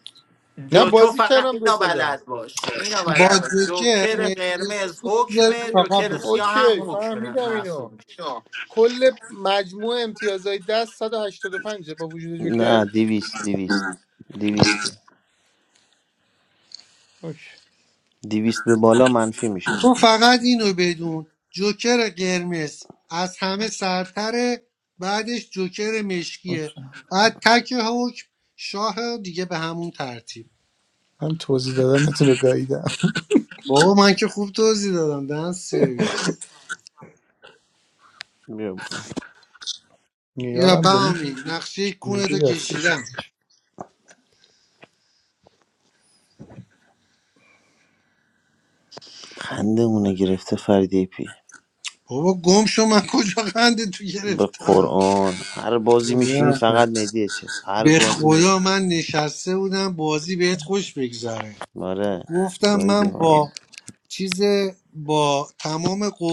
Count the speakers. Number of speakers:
four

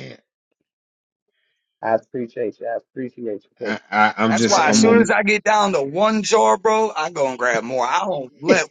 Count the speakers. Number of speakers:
three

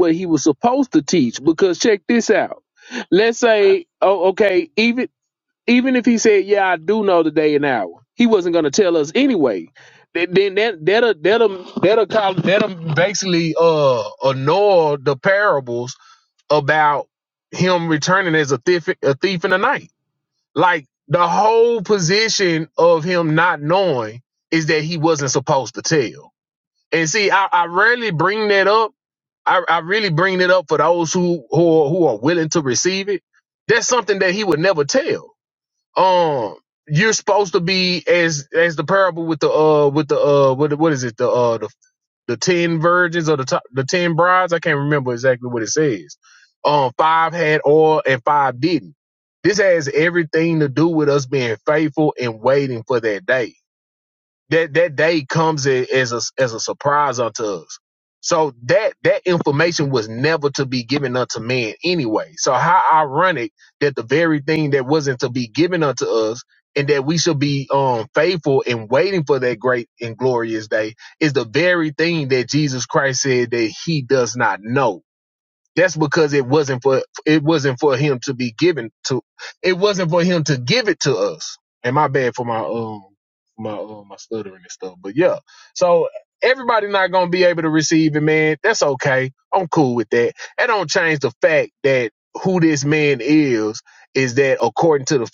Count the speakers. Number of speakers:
one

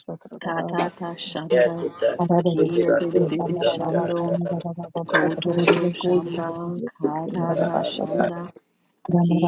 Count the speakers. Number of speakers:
two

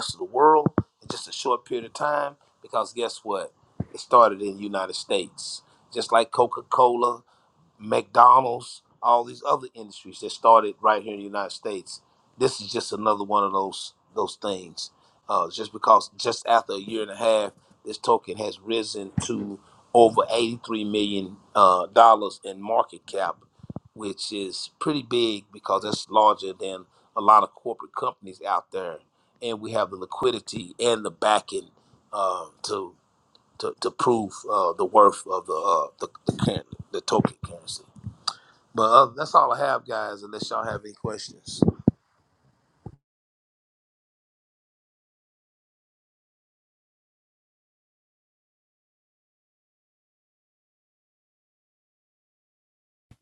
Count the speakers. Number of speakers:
one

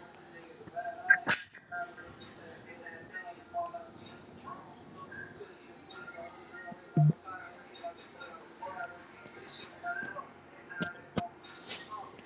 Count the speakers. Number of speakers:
zero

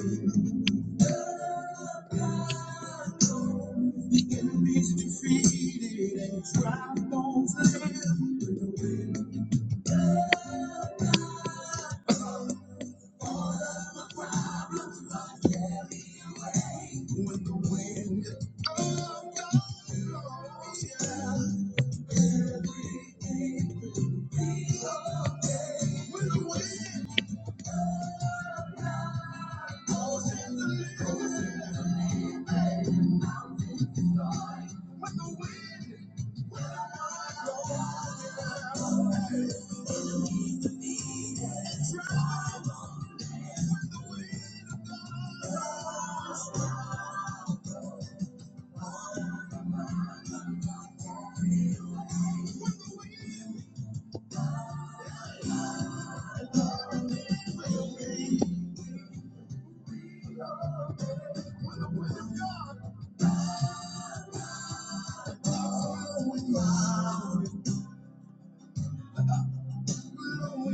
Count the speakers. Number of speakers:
zero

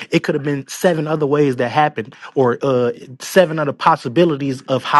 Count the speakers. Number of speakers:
one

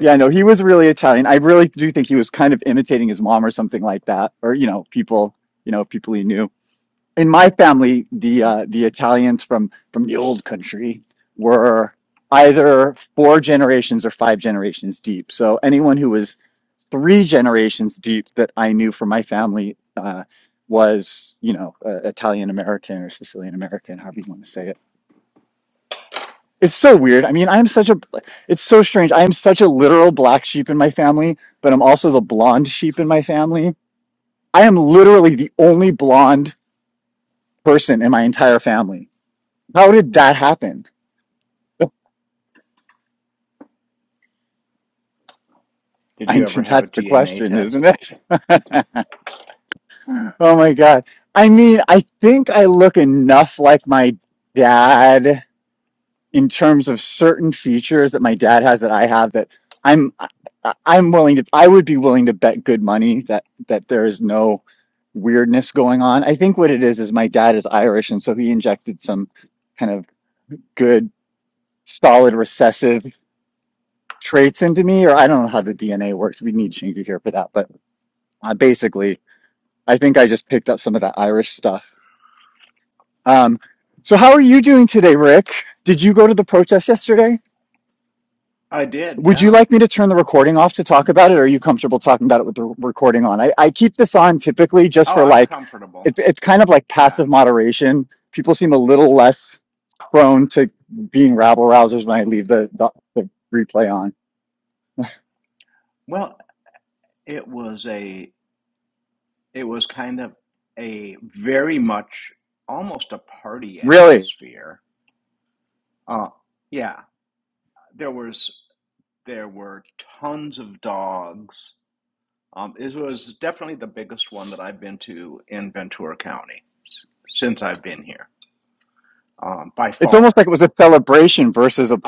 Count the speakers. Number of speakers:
two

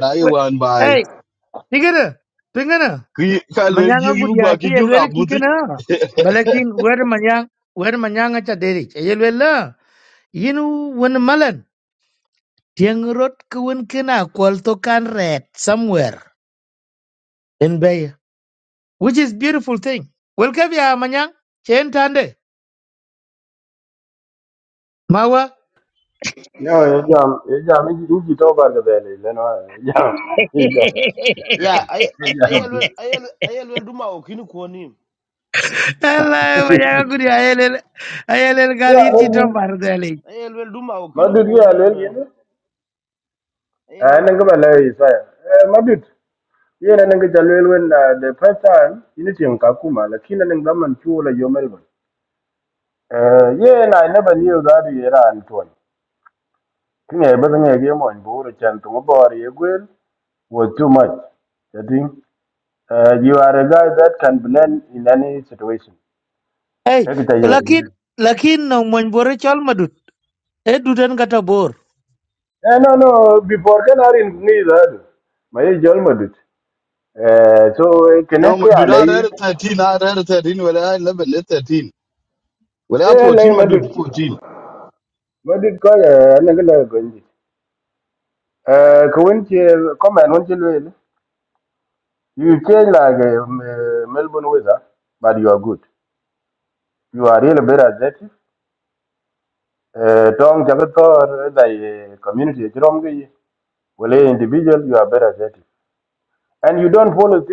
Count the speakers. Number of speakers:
four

